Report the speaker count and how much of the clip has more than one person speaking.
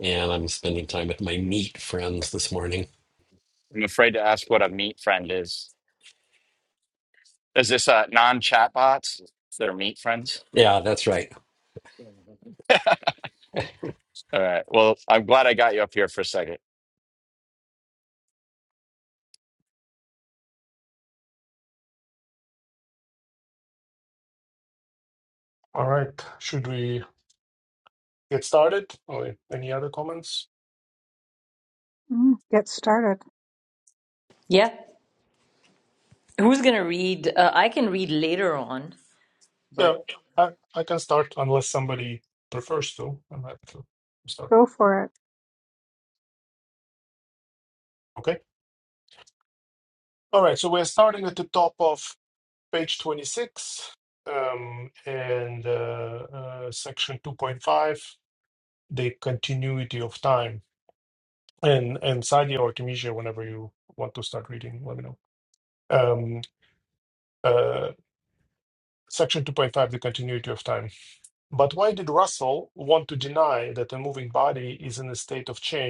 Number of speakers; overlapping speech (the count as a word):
five, under 1%